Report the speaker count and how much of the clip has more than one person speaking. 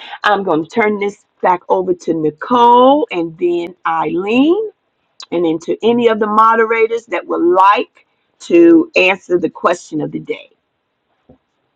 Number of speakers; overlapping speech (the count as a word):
one, no overlap